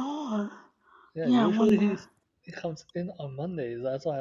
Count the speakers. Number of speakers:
2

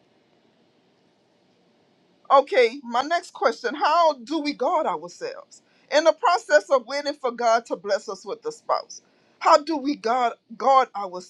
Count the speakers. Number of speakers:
1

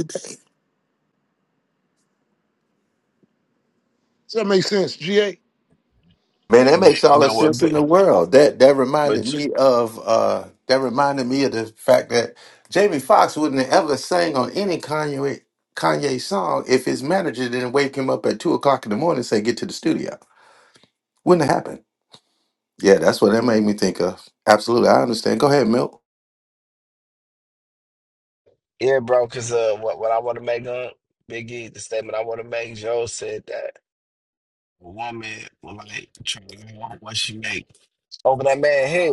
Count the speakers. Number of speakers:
3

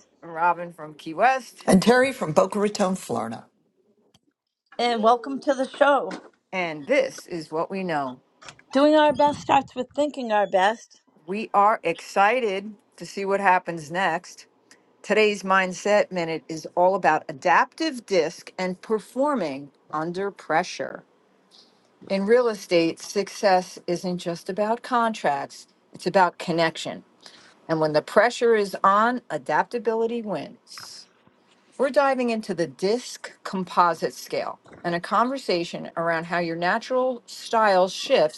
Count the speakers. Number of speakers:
3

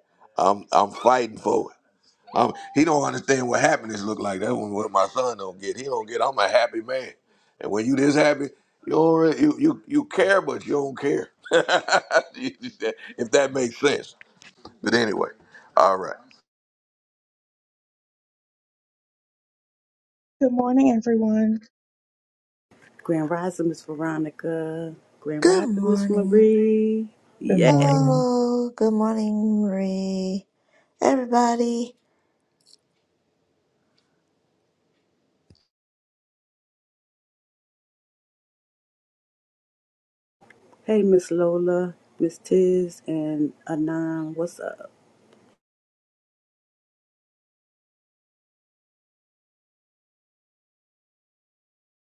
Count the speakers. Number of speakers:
4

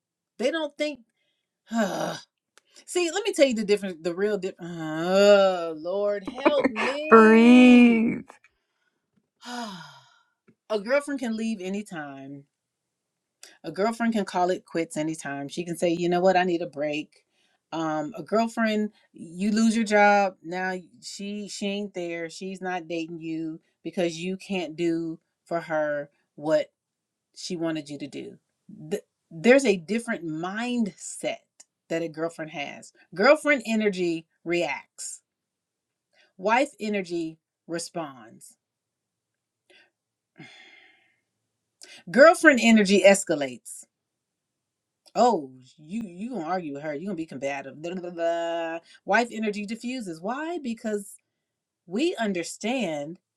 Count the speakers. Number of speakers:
2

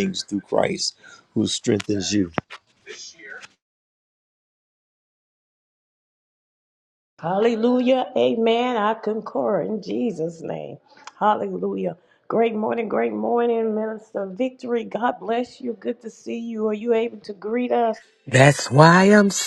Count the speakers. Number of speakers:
3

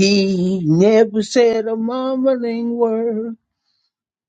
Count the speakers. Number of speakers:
1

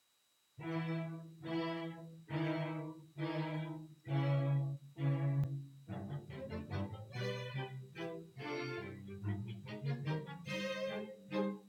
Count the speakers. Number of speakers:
0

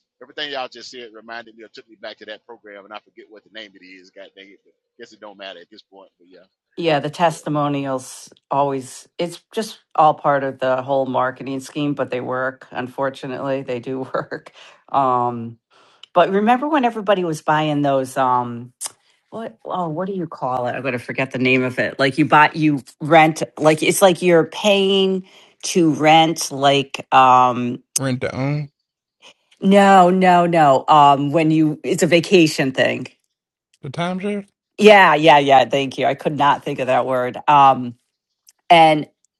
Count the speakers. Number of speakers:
3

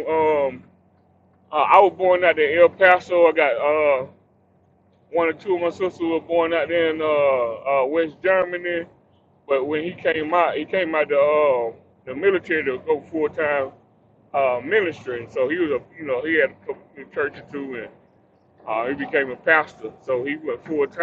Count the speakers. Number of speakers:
1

